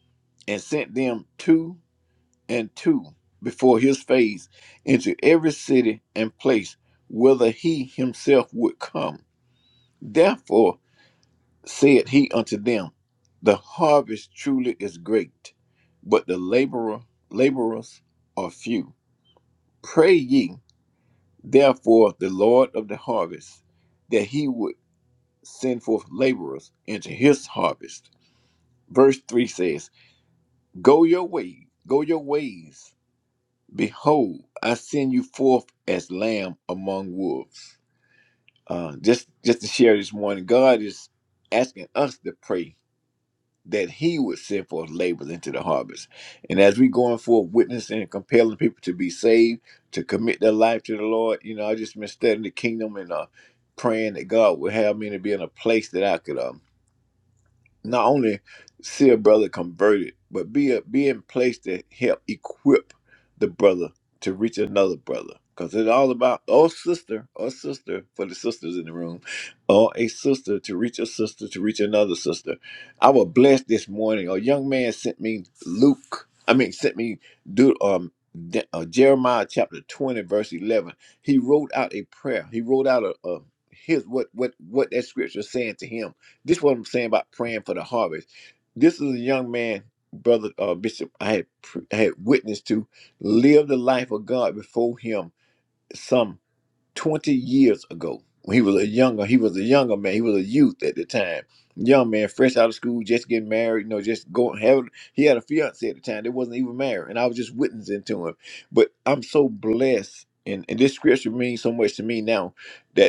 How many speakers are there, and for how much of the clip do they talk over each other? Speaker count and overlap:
one, no overlap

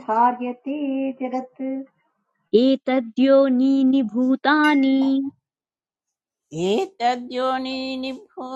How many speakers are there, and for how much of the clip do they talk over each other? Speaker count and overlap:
three, no overlap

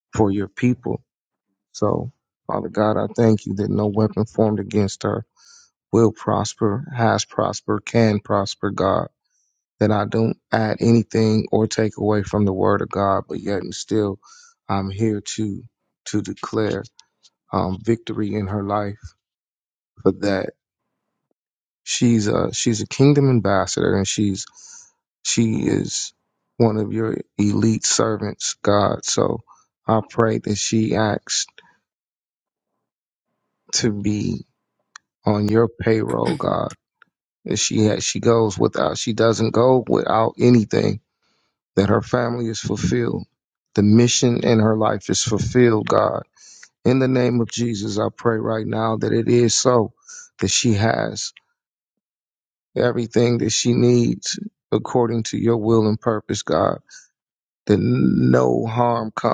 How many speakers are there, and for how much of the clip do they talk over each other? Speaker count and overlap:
one, no overlap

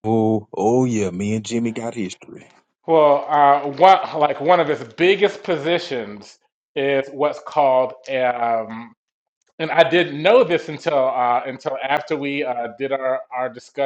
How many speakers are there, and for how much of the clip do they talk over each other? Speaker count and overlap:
two, no overlap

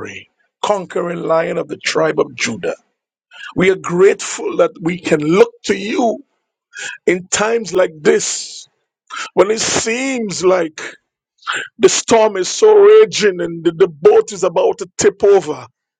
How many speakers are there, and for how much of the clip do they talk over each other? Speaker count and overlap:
one, no overlap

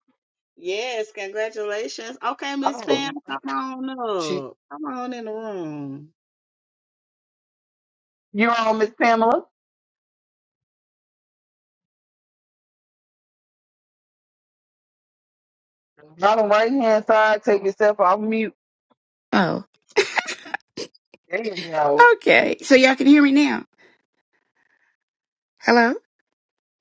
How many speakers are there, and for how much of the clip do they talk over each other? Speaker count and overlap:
three, about 3%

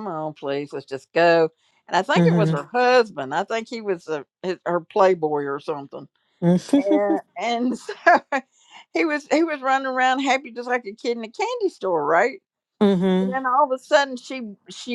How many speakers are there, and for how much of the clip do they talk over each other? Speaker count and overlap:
two, about 4%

